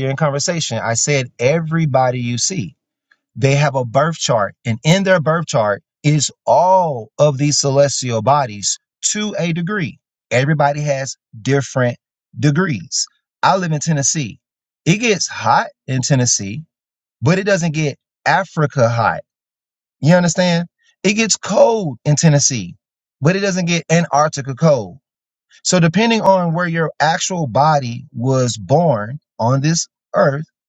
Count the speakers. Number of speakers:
one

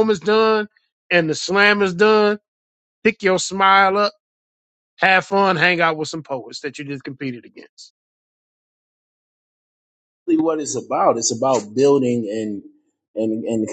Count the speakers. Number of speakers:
two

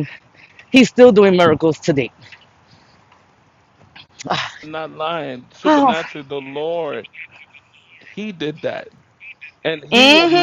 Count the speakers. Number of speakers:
two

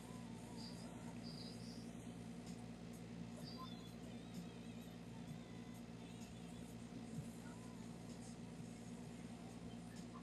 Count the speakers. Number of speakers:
zero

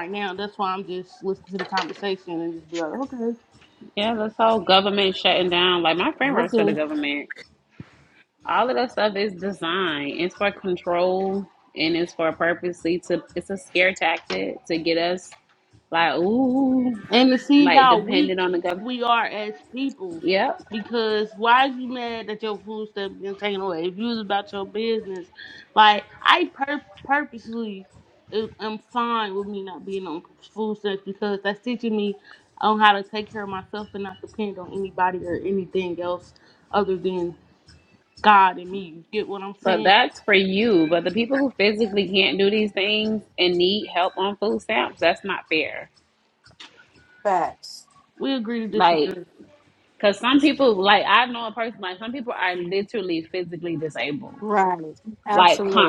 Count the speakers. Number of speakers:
three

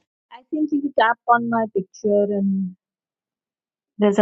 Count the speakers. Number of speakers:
one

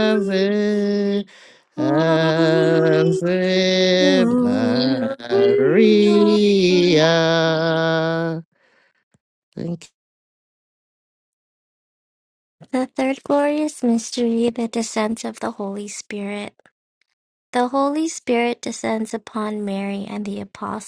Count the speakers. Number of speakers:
three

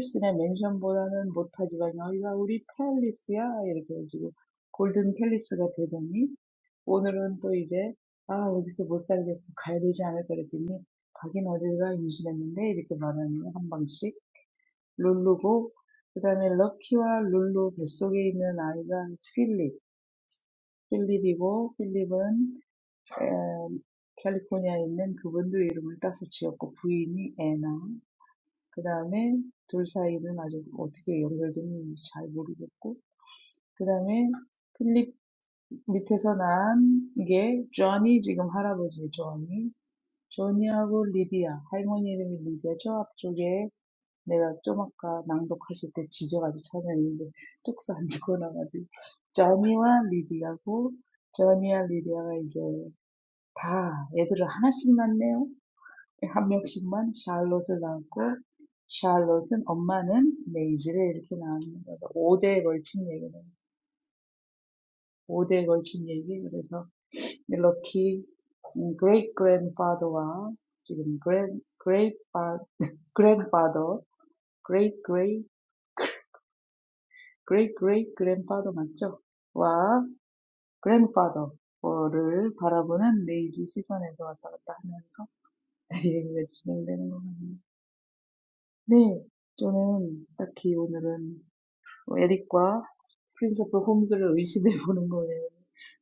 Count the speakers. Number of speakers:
one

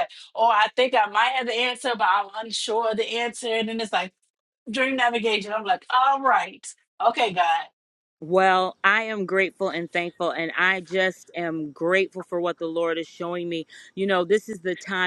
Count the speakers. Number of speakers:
two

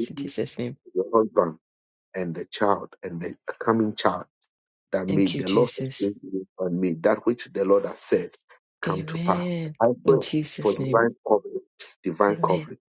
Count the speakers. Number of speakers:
two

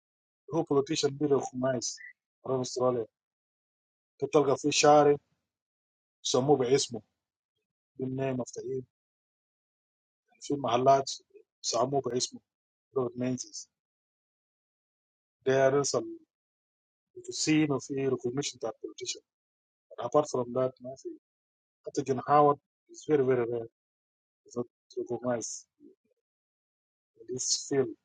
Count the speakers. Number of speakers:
one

